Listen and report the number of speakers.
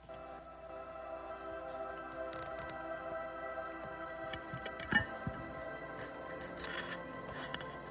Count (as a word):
zero